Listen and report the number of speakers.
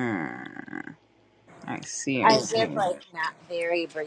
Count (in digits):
2